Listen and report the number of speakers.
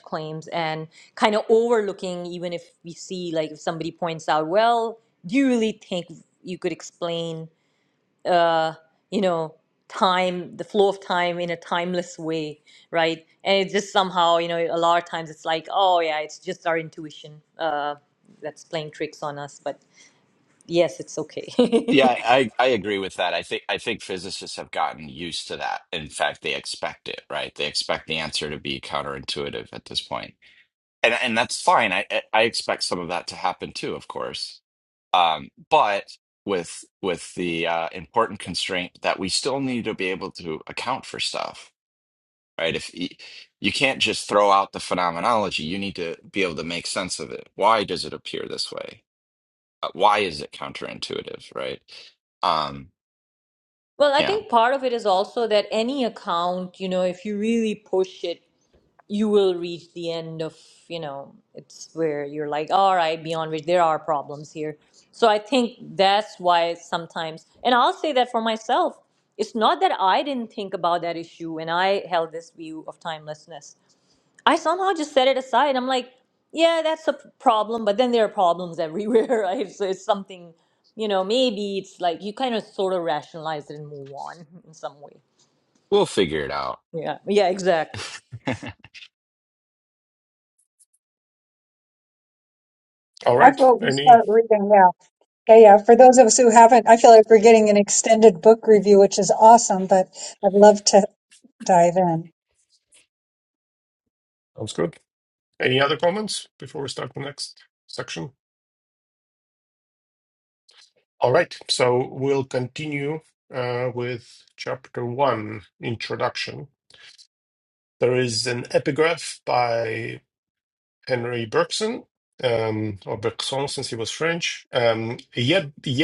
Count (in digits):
4